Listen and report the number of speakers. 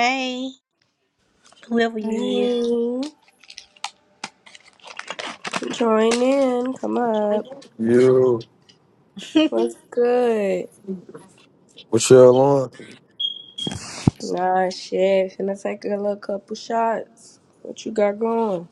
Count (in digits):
3